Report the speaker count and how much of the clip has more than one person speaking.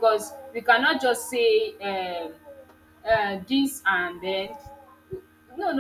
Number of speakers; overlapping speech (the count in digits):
1, no overlap